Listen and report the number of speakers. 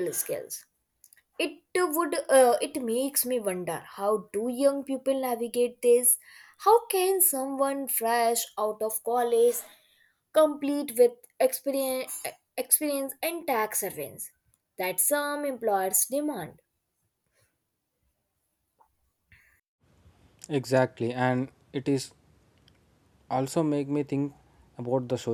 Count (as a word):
two